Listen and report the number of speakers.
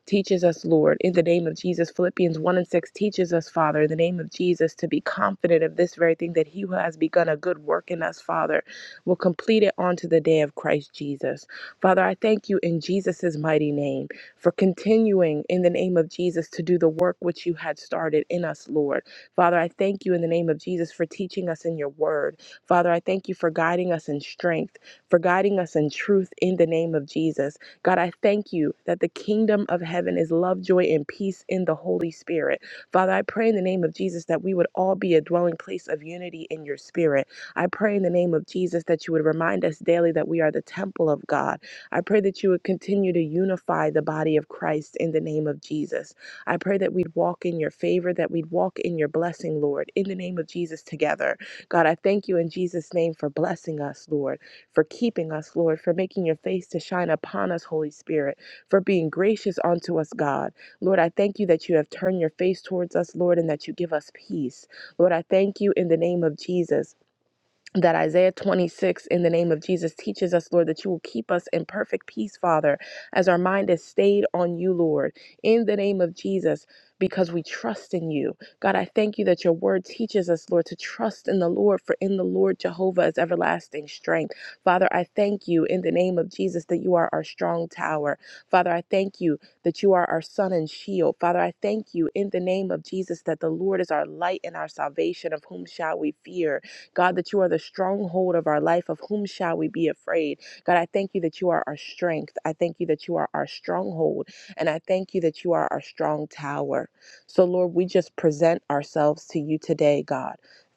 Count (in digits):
1